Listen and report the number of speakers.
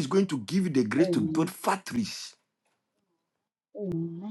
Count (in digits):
2